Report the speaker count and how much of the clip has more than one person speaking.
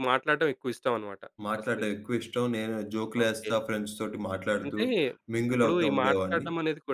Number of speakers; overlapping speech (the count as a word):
two, about 30%